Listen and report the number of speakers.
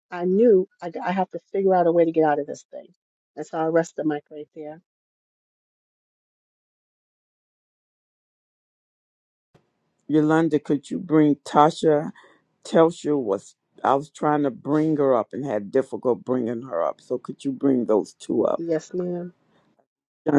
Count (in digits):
2